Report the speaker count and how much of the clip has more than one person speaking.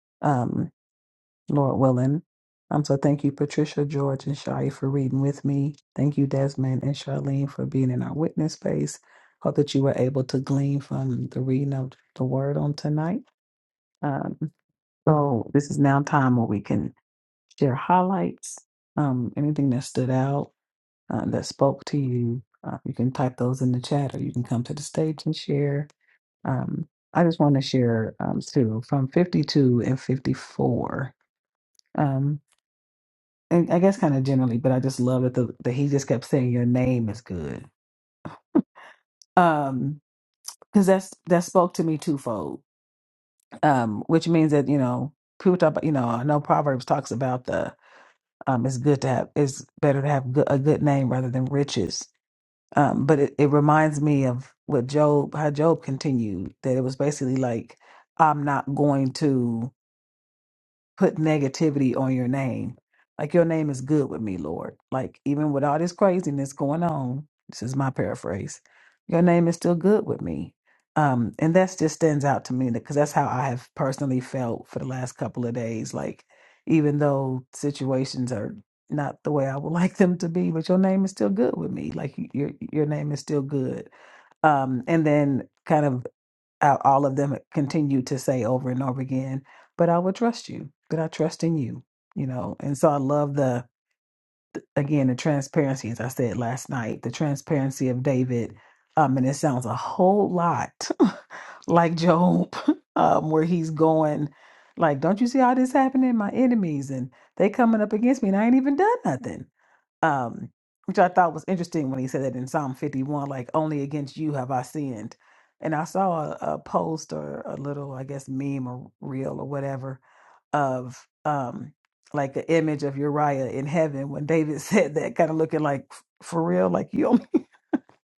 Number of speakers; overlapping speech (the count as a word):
one, no overlap